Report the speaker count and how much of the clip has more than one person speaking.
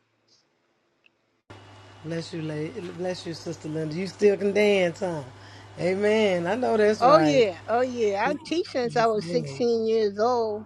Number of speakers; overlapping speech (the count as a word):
two, about 4%